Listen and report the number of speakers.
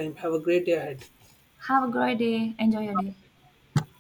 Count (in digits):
2